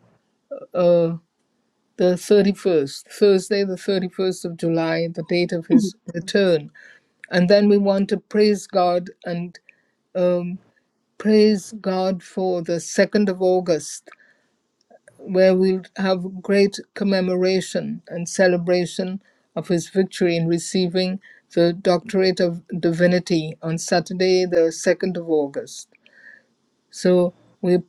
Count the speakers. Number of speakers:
one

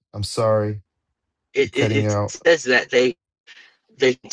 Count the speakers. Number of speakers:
two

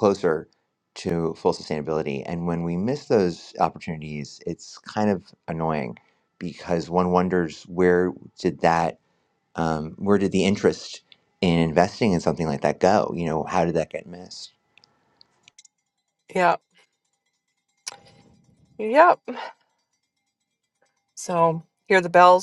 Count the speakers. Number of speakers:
two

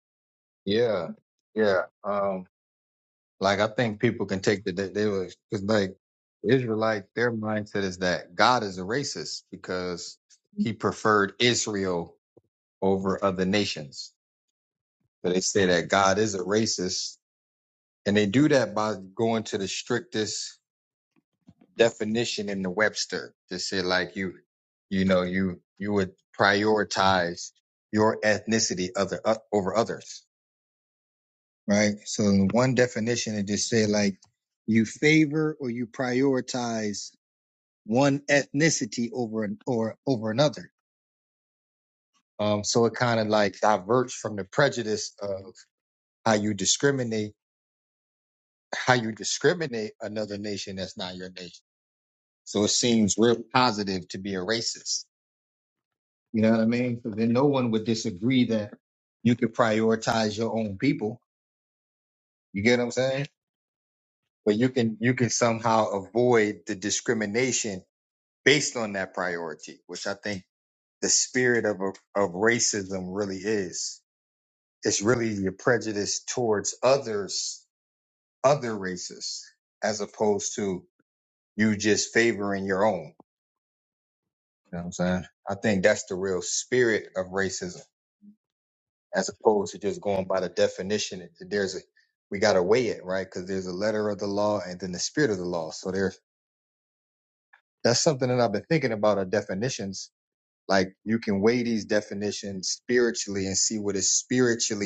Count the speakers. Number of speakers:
one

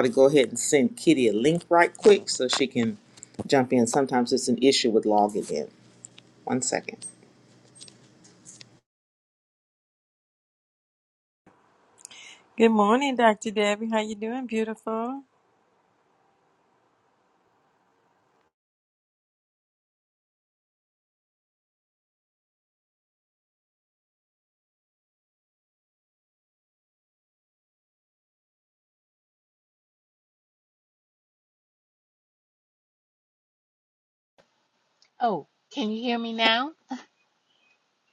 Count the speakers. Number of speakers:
three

